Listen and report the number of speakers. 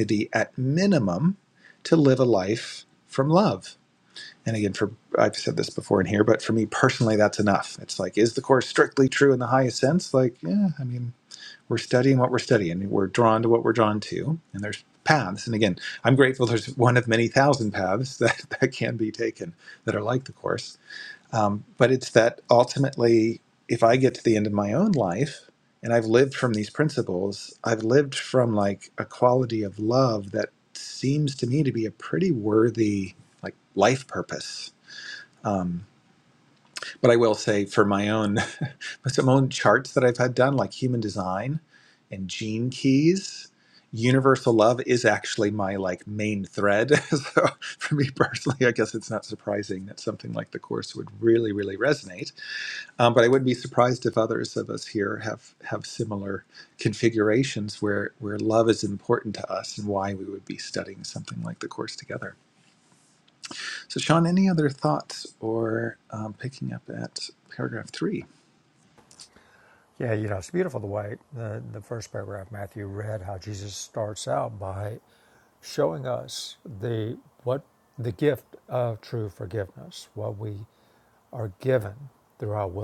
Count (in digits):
2